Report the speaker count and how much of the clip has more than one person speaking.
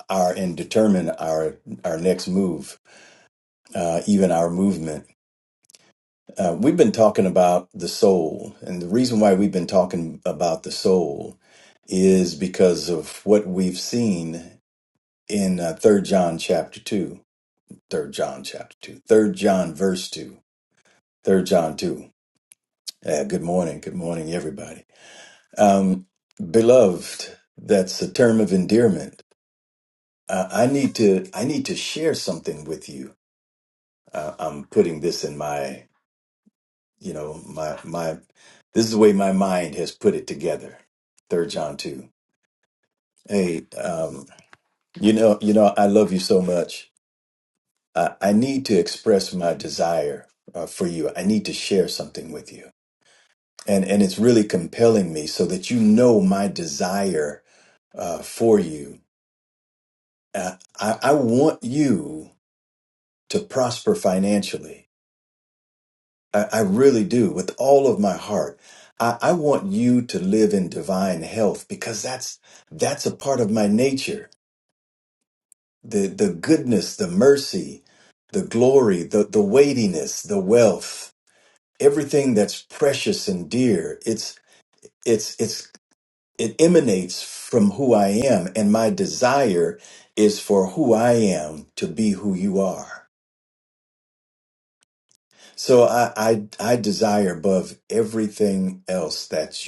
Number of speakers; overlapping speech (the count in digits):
1, no overlap